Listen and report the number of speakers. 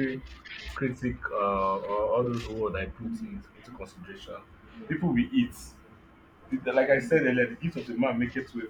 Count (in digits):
1